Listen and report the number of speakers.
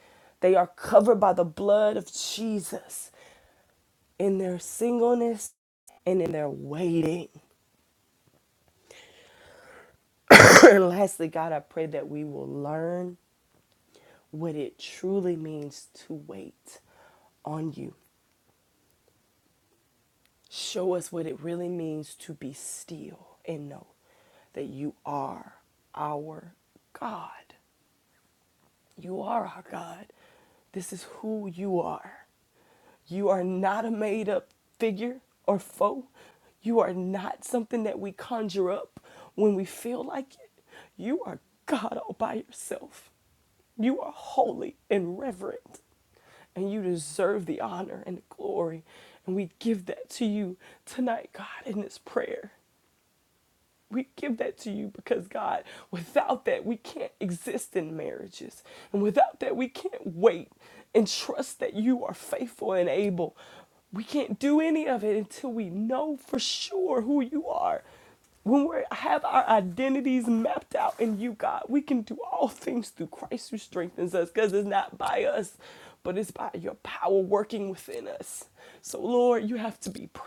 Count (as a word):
one